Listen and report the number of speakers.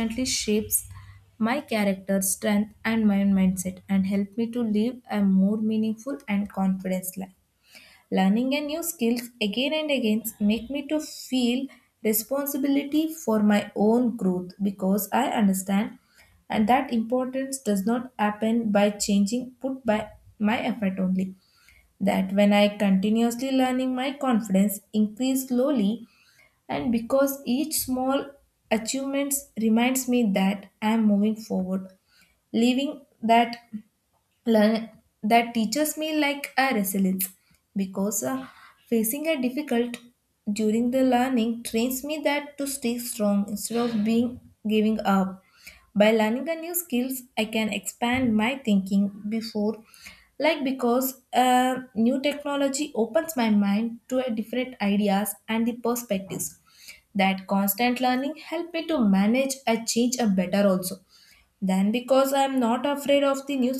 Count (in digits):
1